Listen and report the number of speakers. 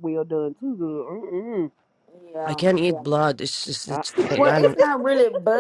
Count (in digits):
3